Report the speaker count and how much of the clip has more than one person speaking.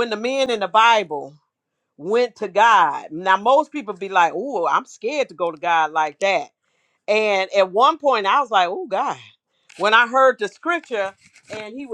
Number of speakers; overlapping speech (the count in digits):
1, no overlap